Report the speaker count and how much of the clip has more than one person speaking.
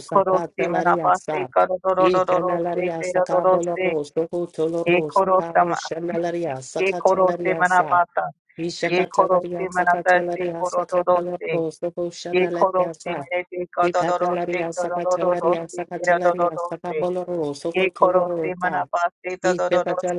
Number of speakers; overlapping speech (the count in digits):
2, about 71%